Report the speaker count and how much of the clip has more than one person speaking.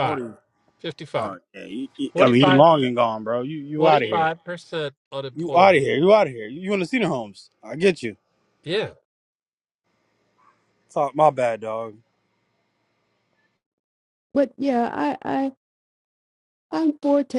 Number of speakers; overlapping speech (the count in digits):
3, about 11%